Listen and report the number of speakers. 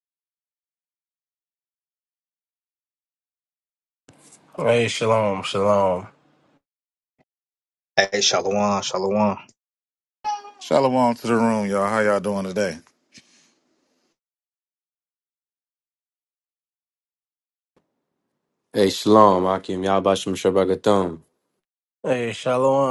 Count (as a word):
four